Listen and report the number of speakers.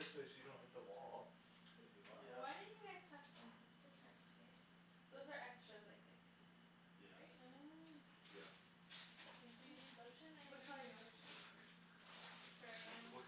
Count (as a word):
four